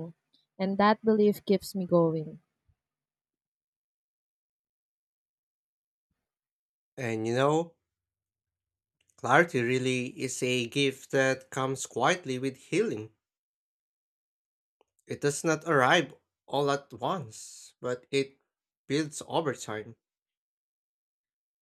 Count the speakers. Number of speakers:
2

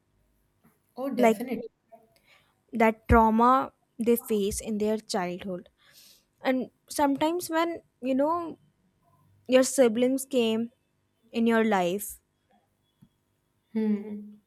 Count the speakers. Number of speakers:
2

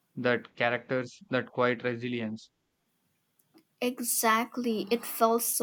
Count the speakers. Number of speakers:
2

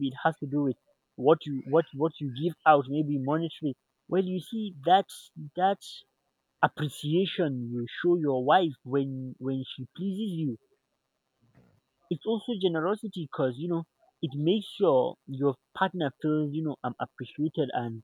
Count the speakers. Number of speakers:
1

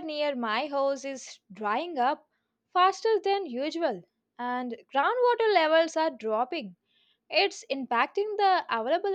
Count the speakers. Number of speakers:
1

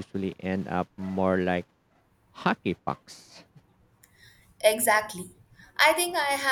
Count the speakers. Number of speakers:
2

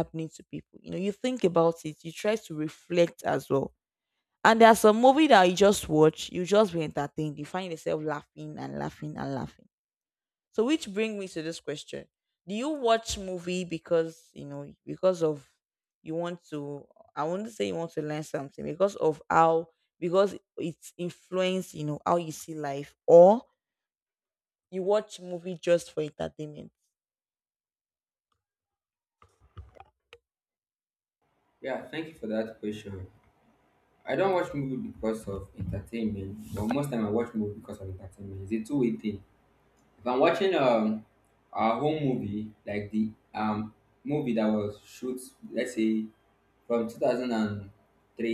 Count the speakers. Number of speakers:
2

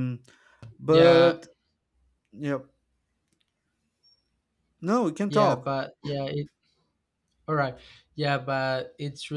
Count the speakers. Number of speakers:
2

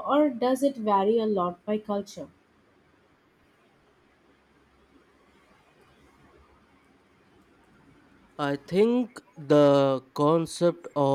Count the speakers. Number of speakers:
2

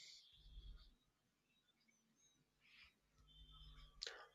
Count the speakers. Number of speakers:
0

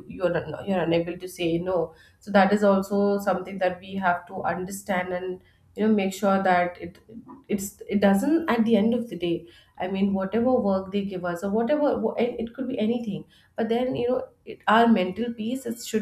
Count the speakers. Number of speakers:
1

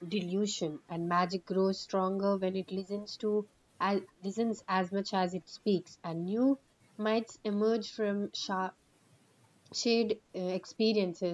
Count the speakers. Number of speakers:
1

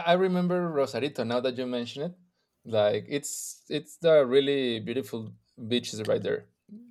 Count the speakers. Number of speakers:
1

